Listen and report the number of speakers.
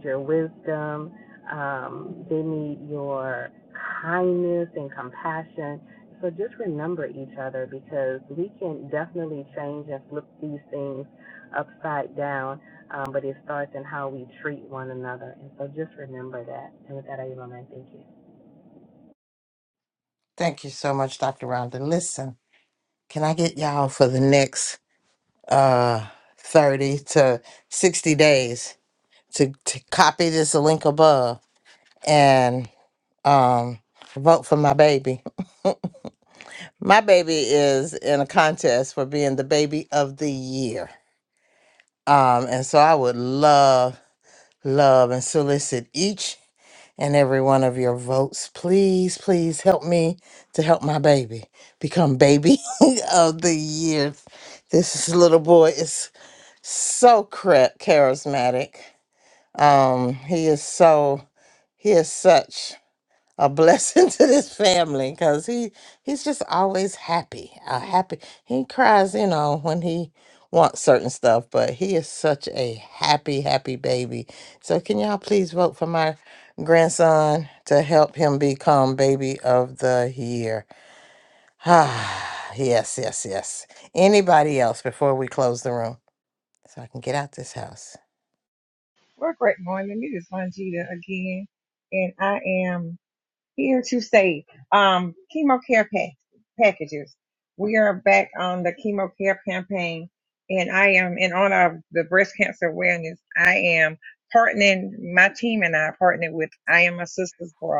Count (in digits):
3